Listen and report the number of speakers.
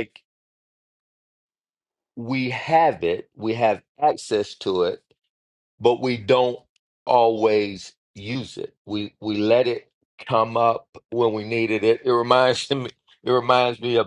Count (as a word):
one